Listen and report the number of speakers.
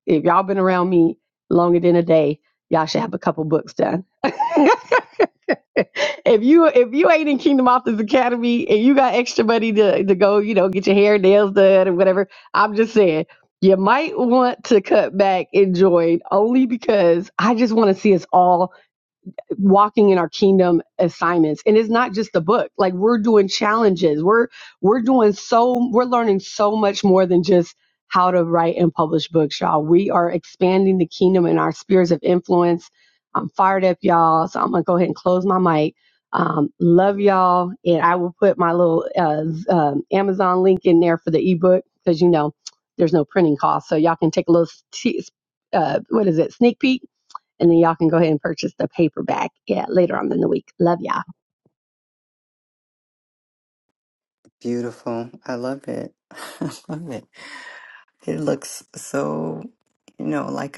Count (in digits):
2